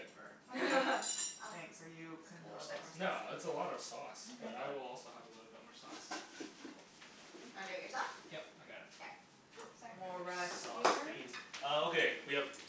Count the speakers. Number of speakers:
4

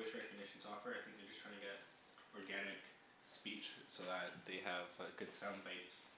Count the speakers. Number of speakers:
1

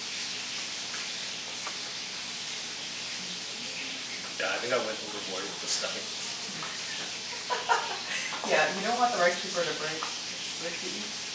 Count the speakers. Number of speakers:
2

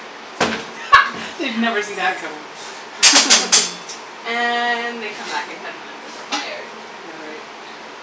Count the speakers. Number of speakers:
2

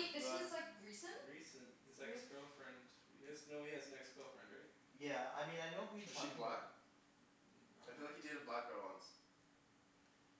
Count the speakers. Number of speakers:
4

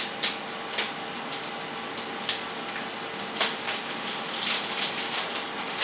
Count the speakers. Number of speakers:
0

